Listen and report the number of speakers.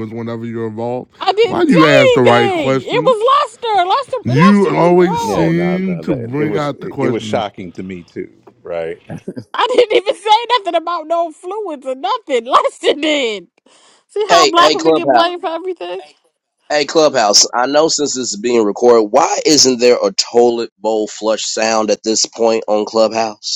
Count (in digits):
4